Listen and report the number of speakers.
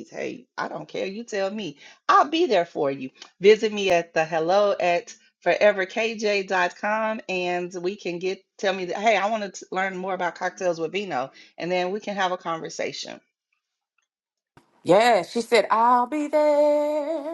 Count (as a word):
two